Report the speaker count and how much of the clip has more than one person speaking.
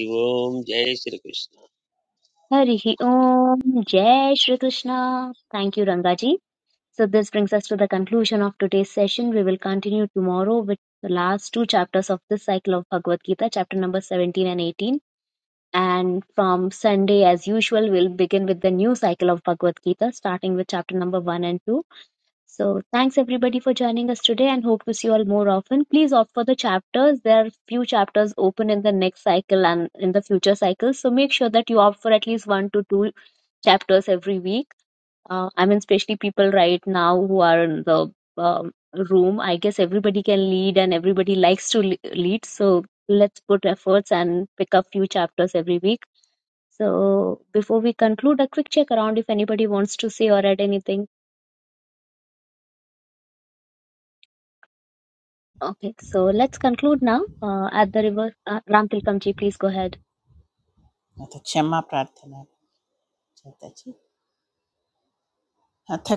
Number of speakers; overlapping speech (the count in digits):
3, no overlap